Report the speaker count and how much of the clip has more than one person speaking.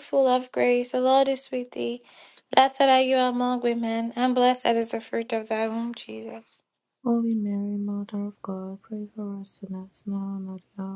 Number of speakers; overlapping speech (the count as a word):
two, no overlap